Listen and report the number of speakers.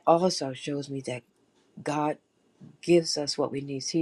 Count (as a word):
one